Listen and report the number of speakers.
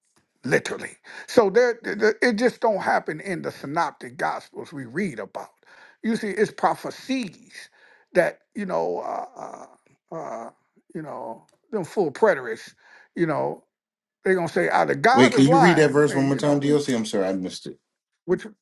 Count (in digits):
2